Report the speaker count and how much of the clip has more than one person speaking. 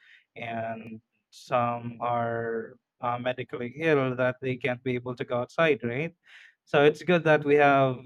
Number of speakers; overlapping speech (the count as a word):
one, no overlap